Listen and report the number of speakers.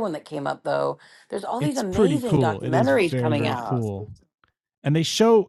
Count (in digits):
2